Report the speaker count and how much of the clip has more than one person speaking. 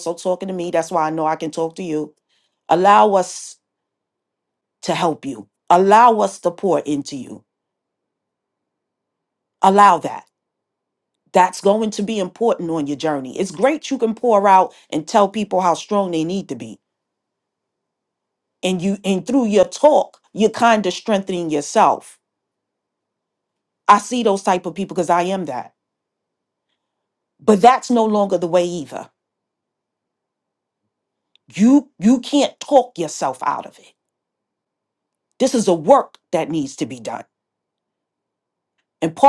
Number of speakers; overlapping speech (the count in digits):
1, no overlap